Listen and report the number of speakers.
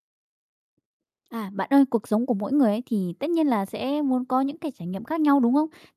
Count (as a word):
one